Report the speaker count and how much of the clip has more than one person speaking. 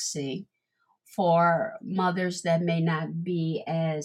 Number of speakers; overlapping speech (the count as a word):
one, no overlap